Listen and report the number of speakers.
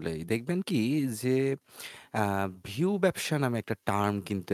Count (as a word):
one